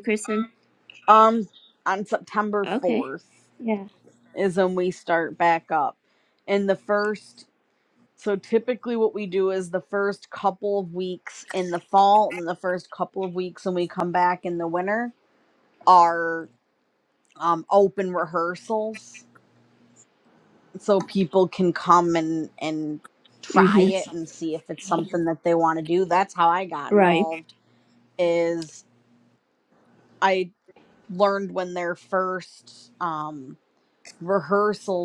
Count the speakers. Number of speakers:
2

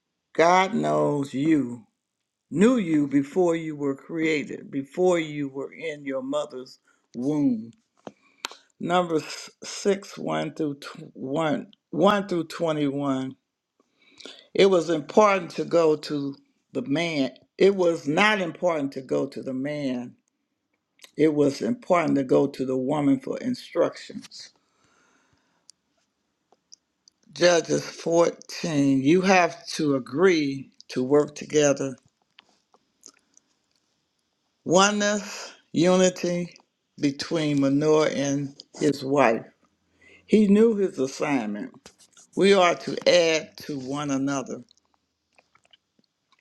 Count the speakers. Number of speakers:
1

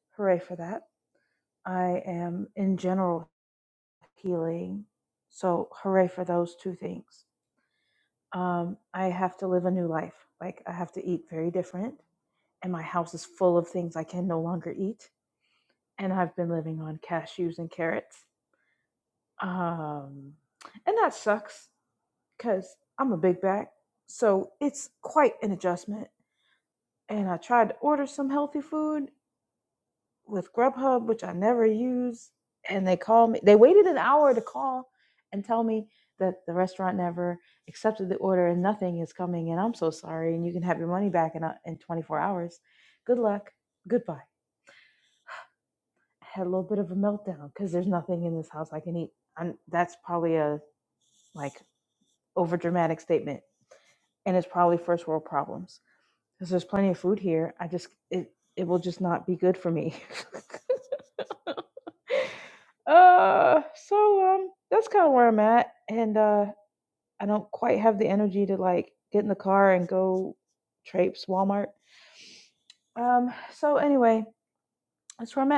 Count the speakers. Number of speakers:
1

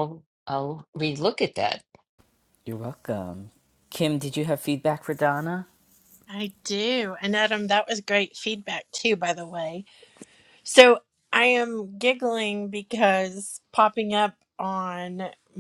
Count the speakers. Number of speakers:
3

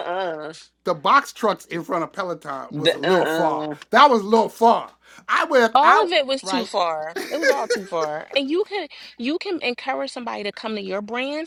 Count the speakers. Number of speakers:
3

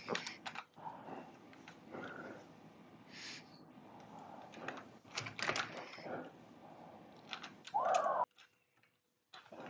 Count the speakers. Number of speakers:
0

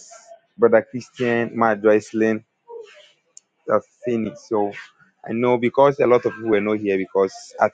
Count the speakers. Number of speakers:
1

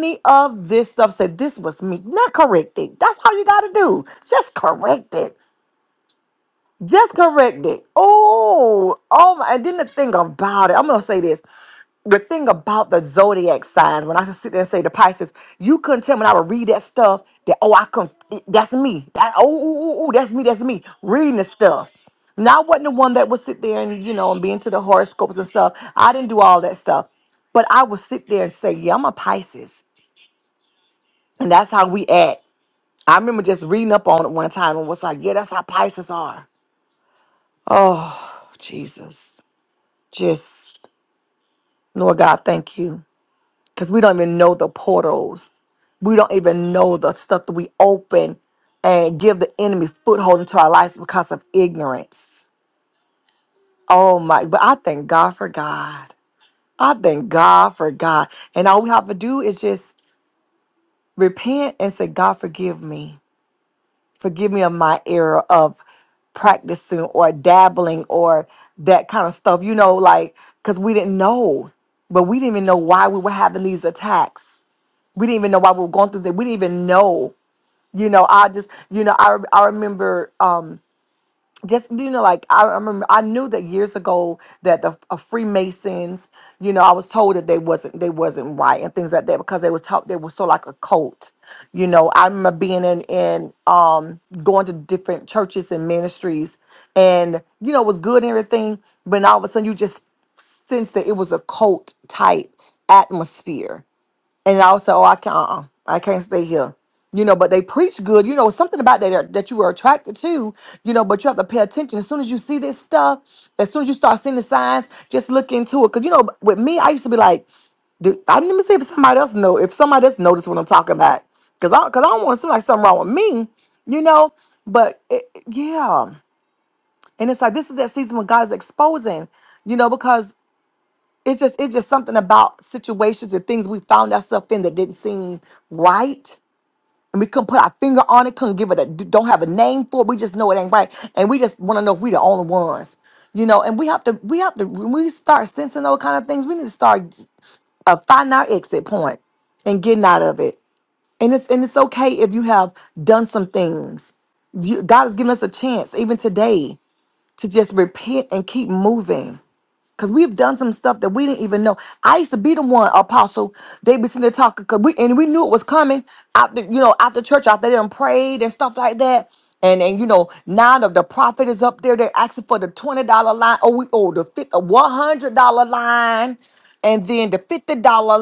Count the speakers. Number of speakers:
1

